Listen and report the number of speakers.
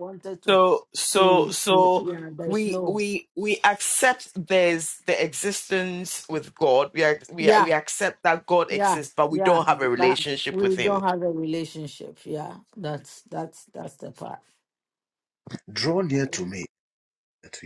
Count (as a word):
three